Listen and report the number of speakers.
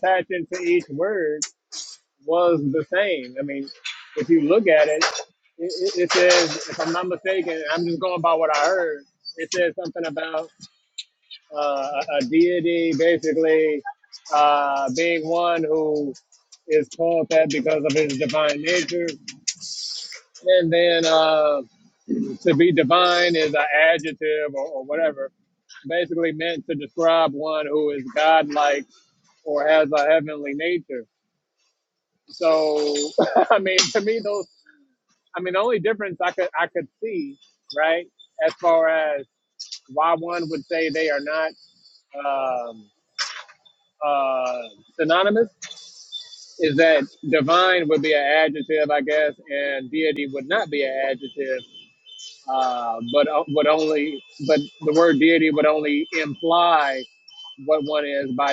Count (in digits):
1